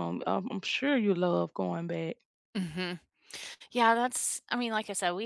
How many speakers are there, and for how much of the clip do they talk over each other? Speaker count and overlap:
two, no overlap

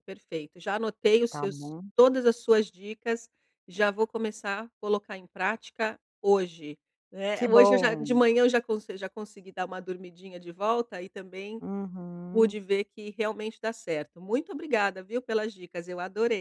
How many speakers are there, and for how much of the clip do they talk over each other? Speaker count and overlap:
two, about 7%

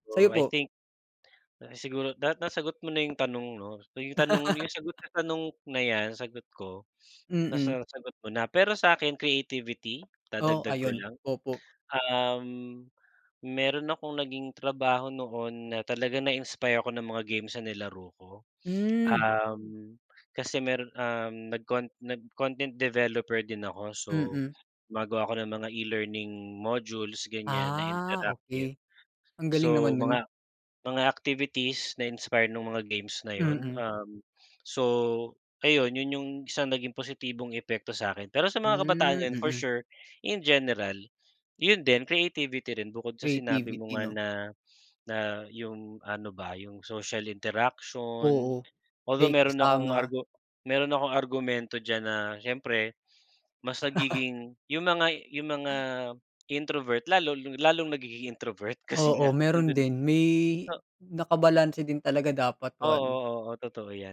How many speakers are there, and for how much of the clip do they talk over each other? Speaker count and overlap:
two, about 13%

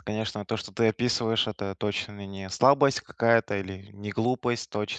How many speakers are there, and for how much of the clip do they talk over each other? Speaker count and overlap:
one, no overlap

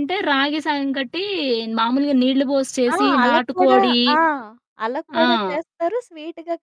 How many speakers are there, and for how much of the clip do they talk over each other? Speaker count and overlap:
two, about 20%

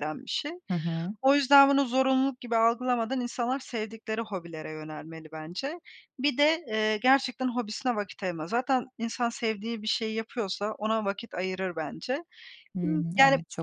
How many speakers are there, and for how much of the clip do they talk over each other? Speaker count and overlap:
two, about 6%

